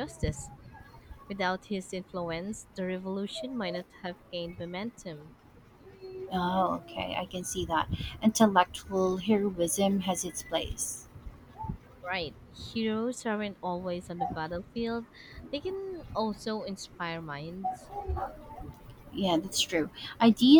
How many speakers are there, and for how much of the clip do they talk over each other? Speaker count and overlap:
two, no overlap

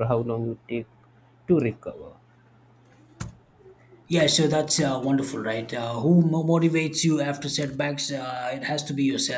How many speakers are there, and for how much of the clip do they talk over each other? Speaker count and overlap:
two, no overlap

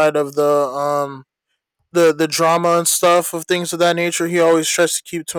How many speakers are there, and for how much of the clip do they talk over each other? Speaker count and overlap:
one, no overlap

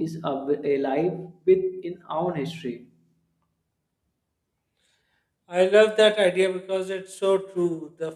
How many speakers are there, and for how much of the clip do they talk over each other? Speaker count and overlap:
two, no overlap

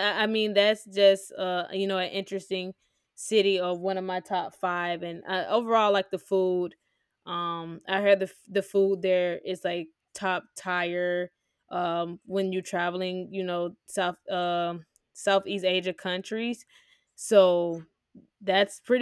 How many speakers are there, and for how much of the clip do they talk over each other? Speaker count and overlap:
one, no overlap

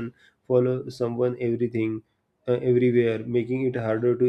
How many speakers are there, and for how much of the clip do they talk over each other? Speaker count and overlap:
one, no overlap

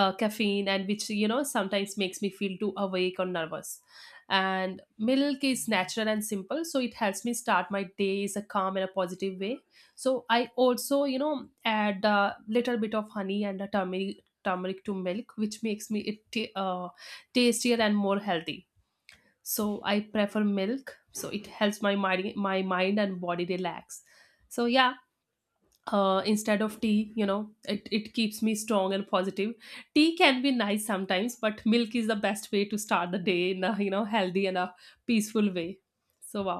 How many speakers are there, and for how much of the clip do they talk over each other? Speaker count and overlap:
one, no overlap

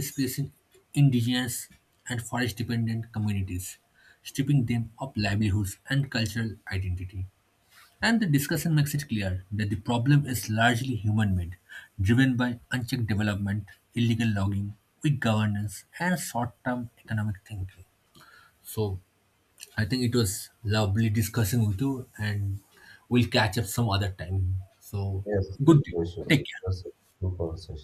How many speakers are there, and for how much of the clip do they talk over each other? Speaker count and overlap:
two, about 1%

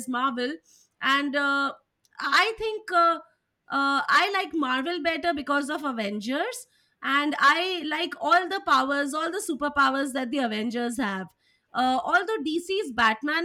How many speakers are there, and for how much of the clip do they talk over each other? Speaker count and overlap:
one, no overlap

